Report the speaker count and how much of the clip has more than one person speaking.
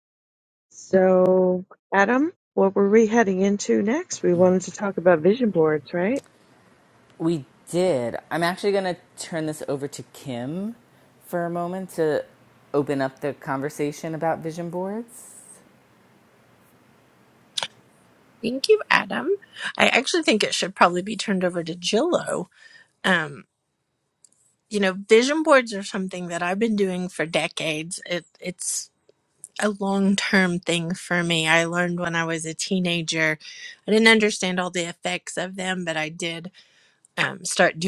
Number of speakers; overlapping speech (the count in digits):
3, no overlap